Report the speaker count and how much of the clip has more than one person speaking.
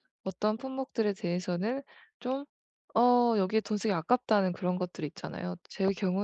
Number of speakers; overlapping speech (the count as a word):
one, no overlap